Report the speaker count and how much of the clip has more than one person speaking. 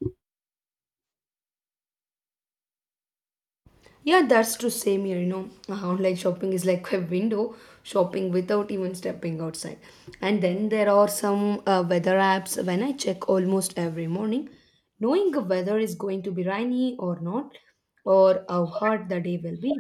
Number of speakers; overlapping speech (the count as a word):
one, no overlap